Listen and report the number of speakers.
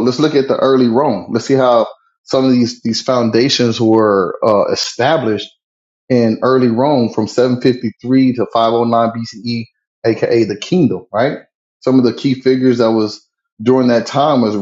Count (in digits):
1